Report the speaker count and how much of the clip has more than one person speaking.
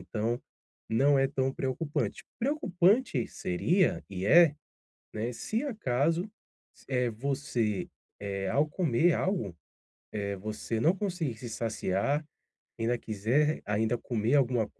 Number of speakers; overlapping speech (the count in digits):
1, no overlap